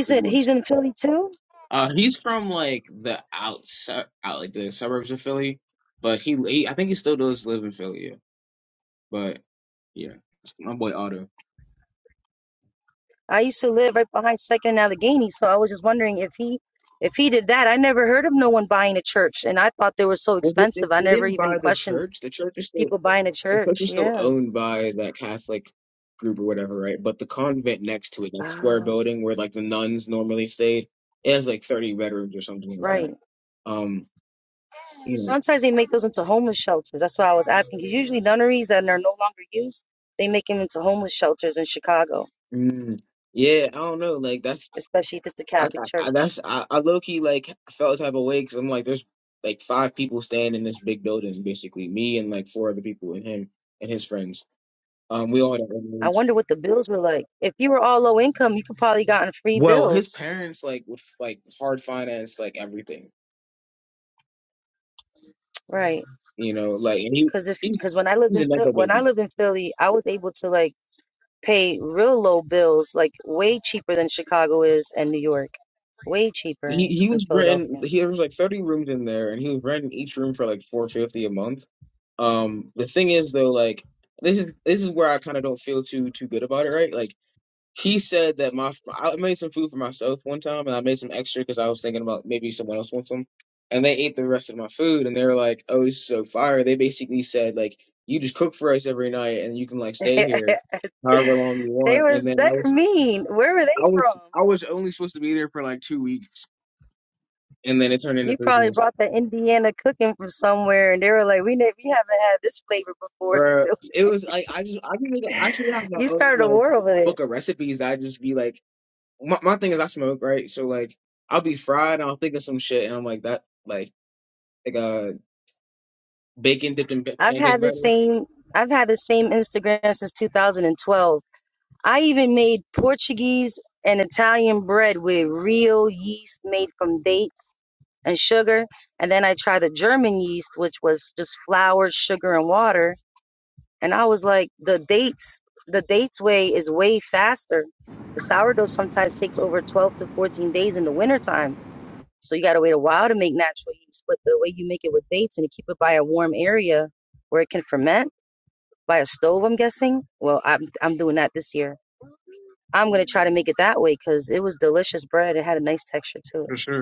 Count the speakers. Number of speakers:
two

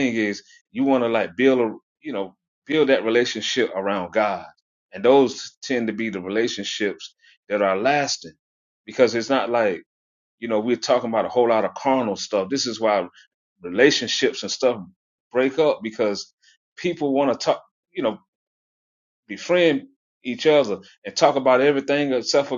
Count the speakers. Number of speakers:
one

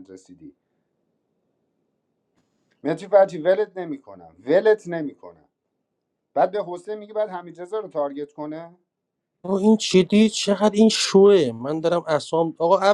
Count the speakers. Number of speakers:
two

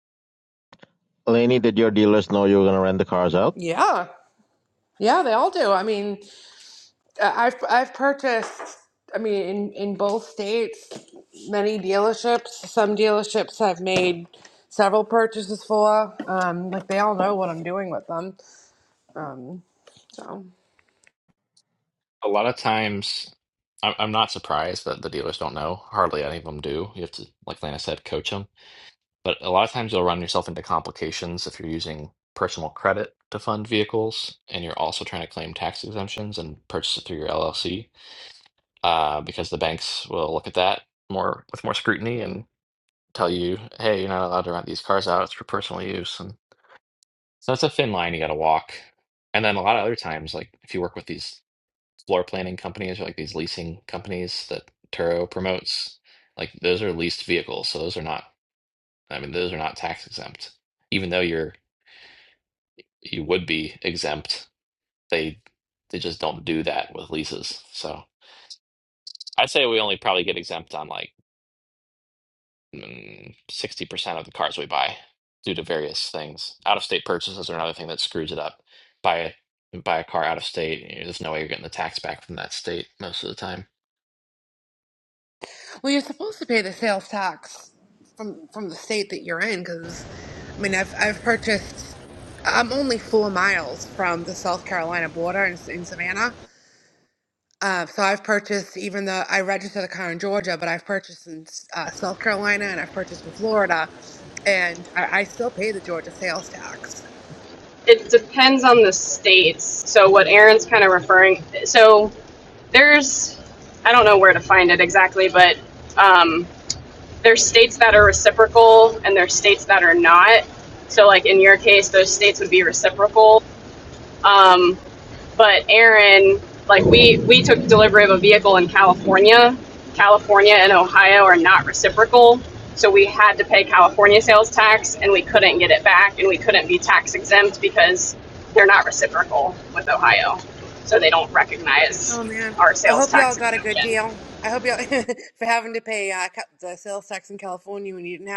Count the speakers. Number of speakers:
four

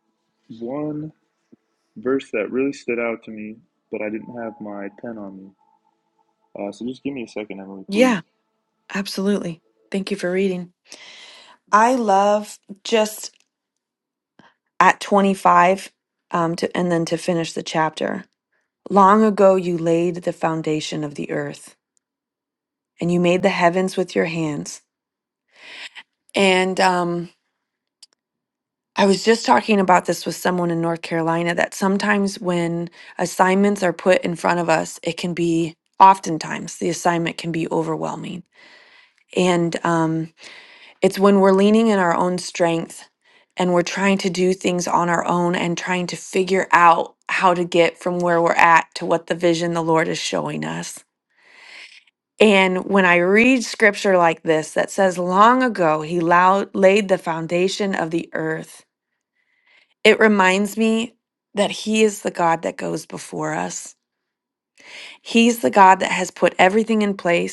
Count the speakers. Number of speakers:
two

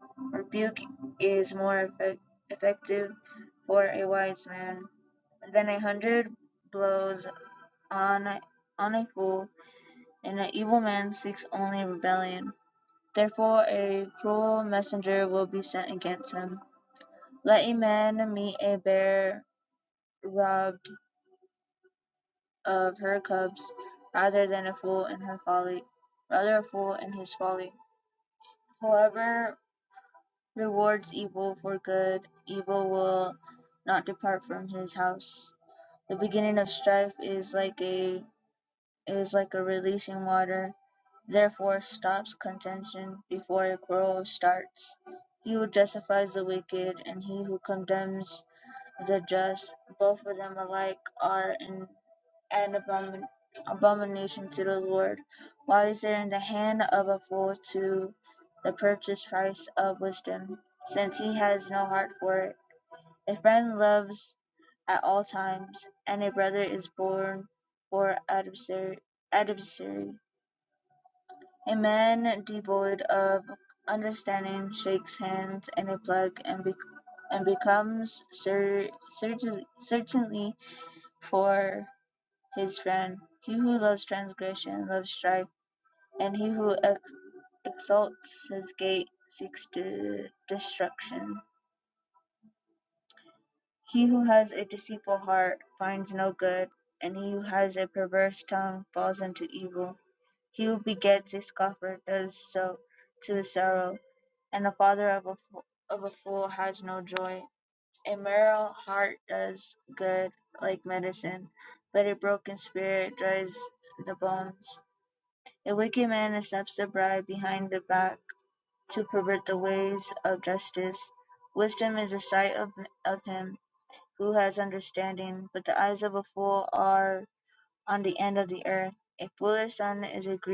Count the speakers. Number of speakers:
one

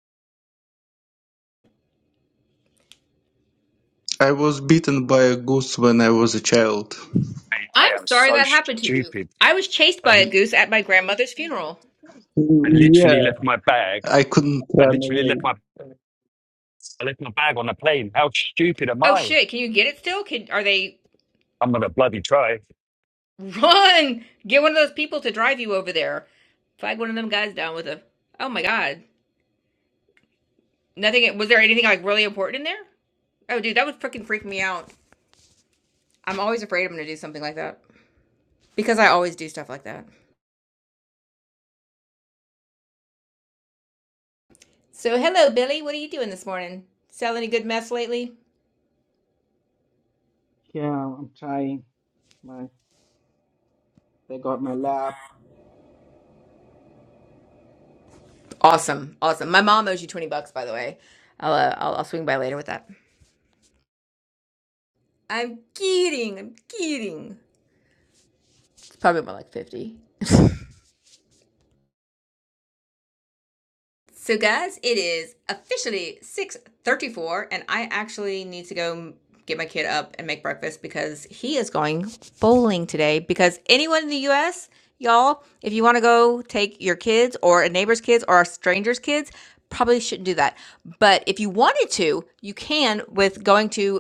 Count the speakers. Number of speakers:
four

